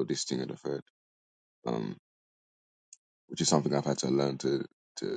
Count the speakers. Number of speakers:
1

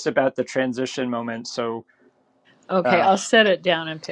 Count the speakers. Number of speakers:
2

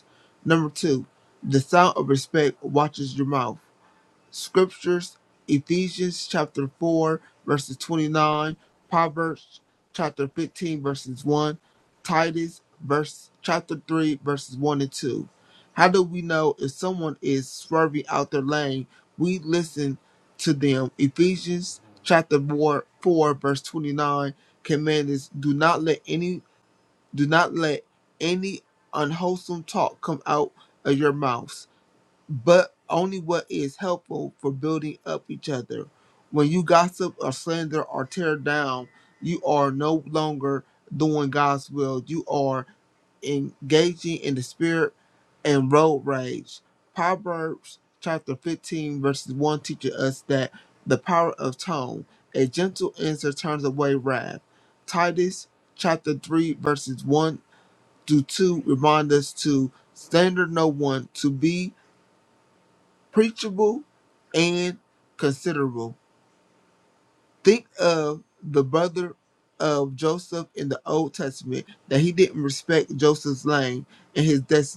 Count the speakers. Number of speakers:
1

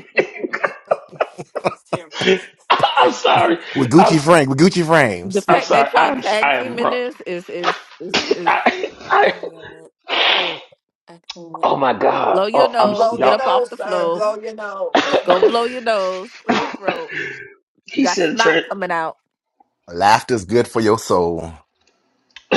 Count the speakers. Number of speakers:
5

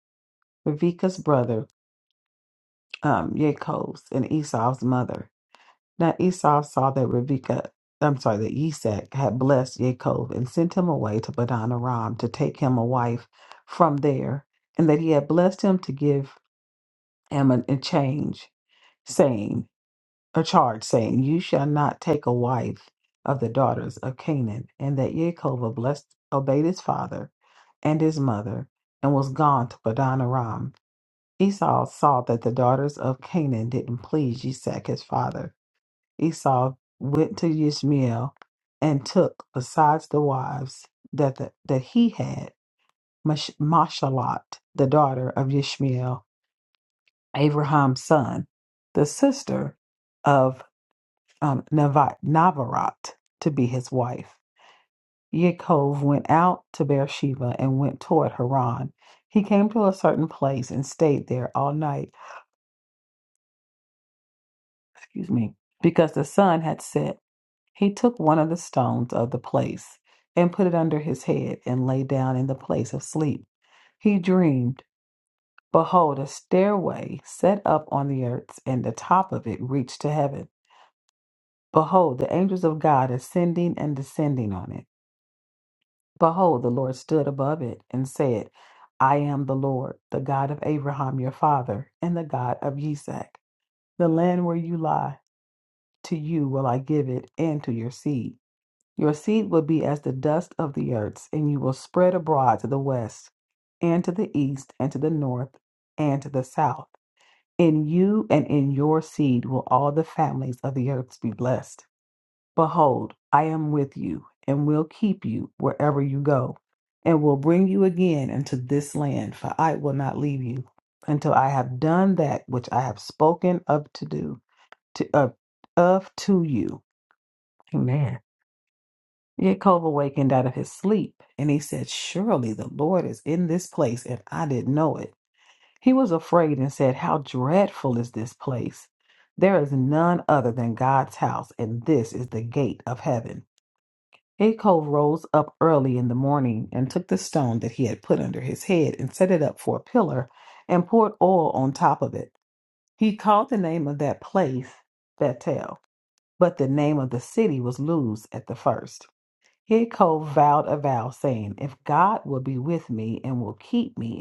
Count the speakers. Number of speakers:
1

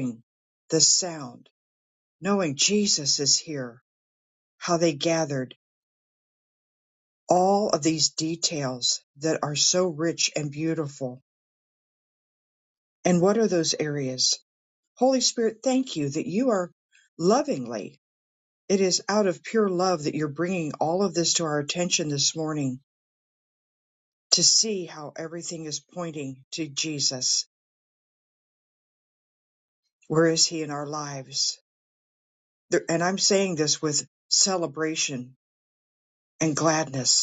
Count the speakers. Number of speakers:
1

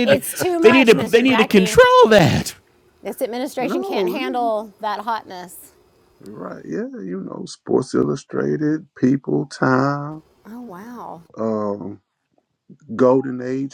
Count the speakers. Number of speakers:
3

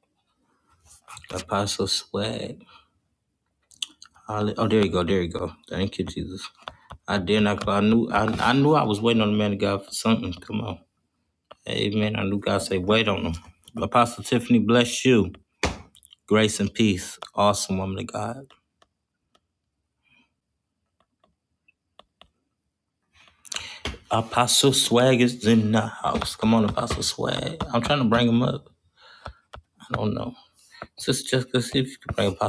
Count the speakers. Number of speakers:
1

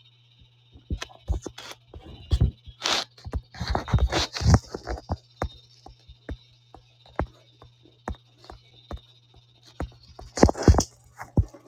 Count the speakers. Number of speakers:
0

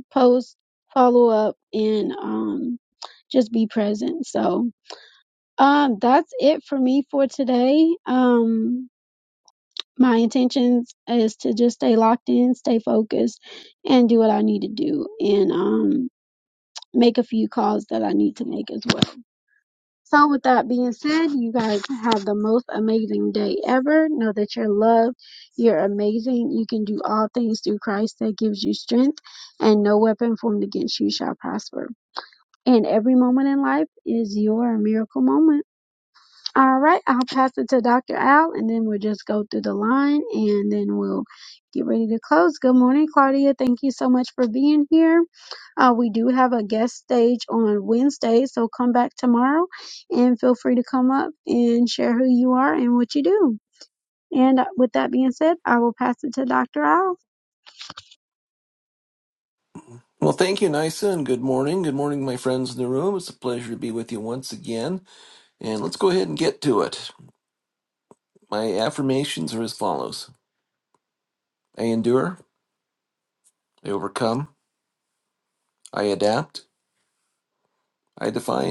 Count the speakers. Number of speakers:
2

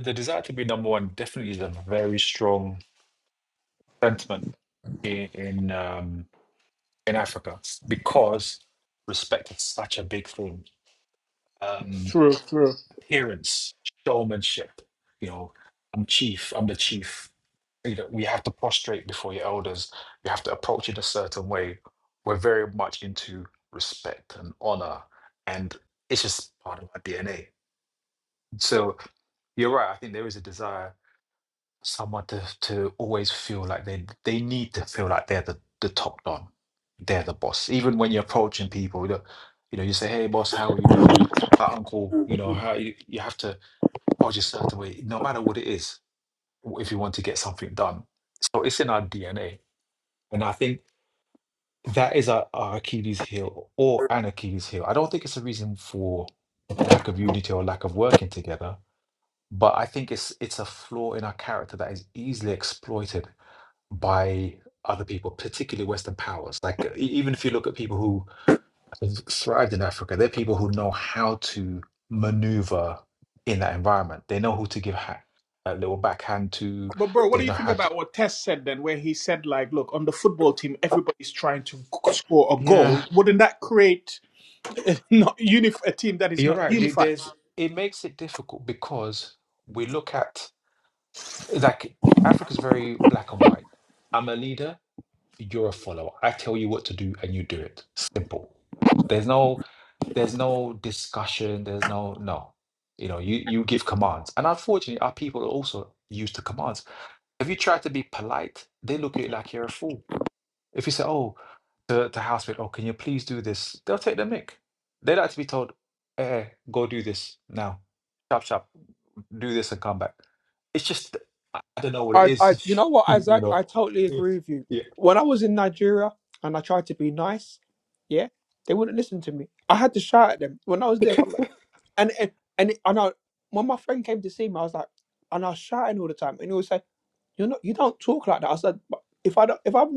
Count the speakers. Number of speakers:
3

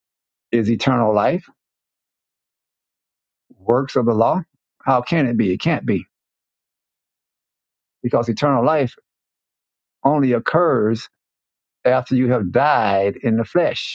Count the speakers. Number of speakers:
1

